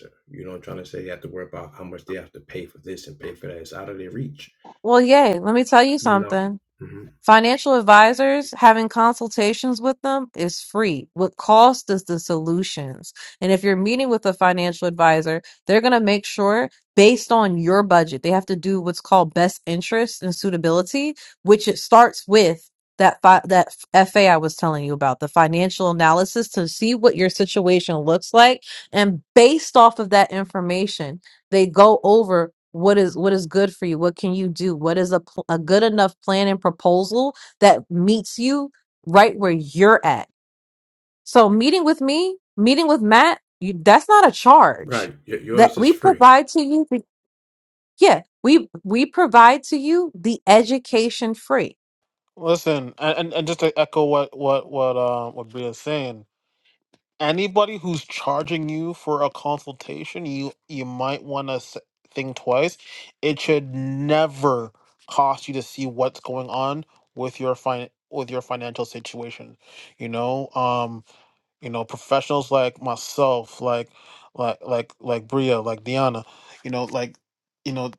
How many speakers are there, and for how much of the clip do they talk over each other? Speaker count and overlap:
three, about 2%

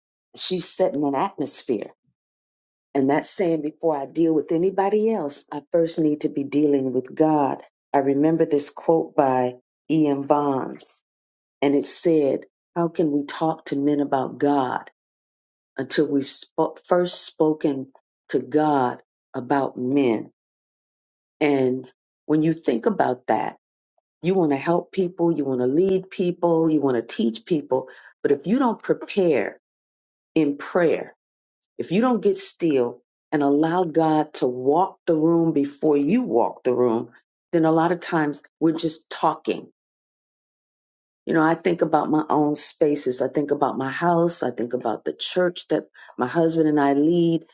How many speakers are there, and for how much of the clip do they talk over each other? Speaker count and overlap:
one, no overlap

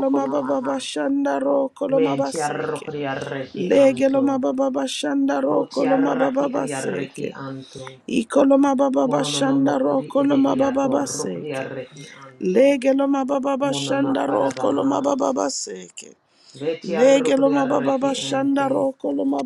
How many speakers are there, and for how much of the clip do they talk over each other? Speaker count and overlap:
two, about 55%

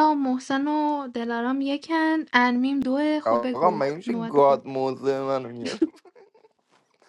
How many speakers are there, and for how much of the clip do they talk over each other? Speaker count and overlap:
two, about 19%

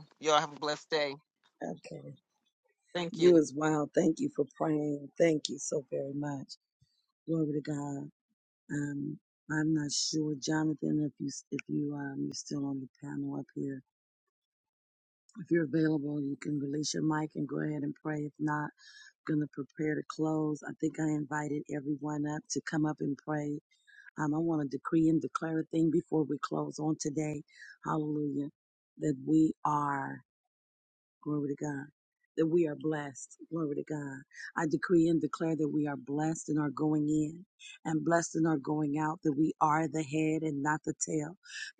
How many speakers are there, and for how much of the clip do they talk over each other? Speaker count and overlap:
two, under 1%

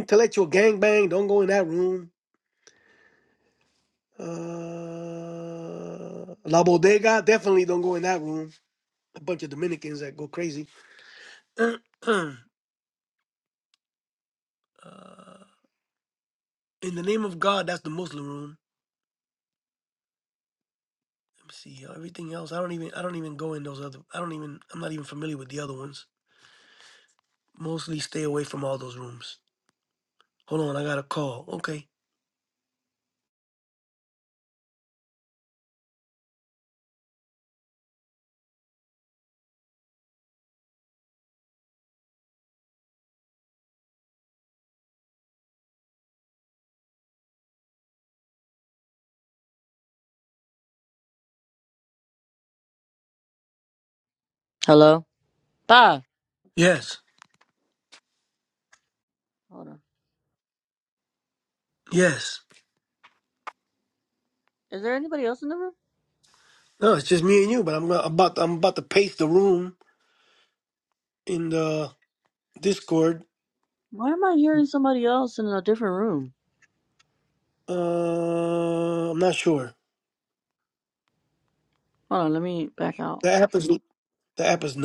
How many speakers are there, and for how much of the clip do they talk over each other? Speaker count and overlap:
two, no overlap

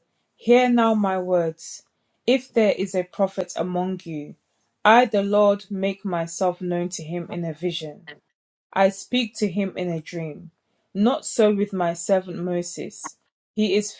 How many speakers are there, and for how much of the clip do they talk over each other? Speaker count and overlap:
one, no overlap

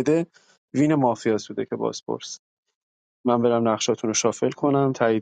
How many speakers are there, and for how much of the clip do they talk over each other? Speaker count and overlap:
one, no overlap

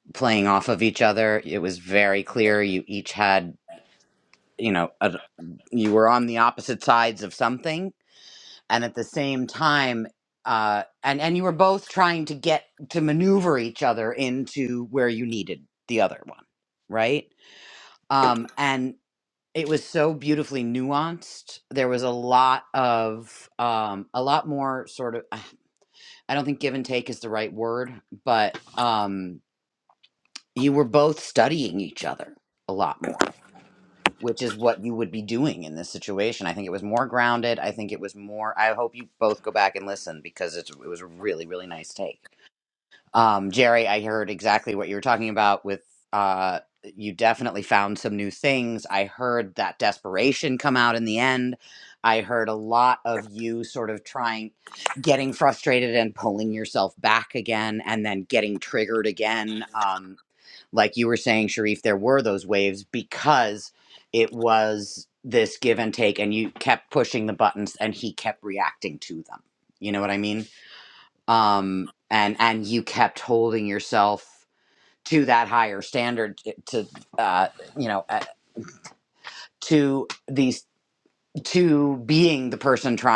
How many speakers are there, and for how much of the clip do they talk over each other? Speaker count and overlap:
one, no overlap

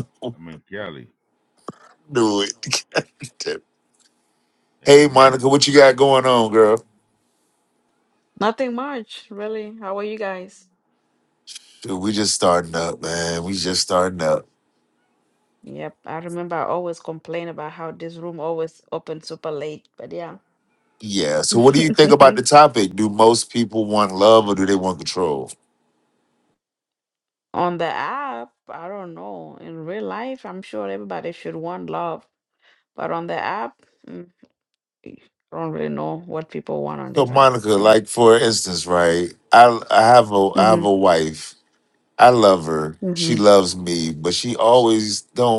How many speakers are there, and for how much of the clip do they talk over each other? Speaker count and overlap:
three, about 5%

